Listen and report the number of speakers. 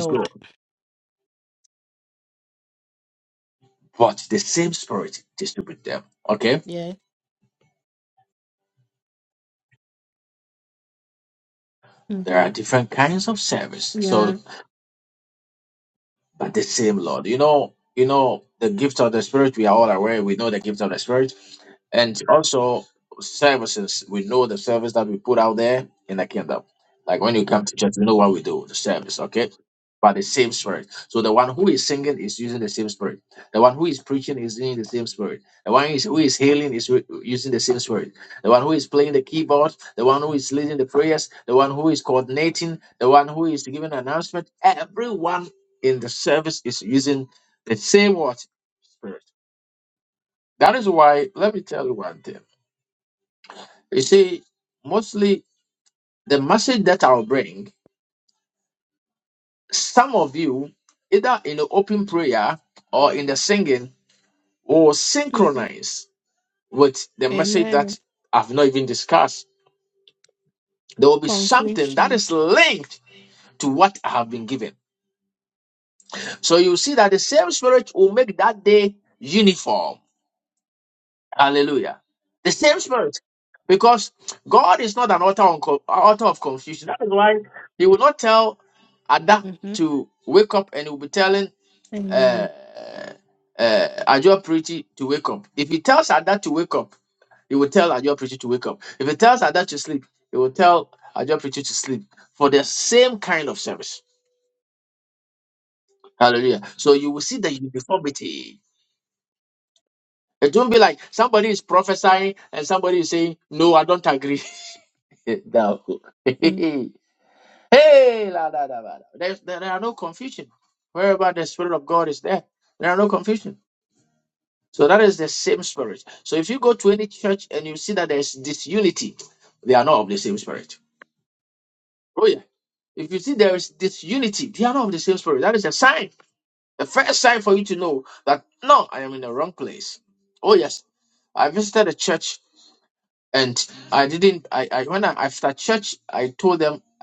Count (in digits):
2